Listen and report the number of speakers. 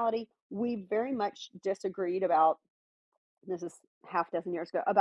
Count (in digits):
1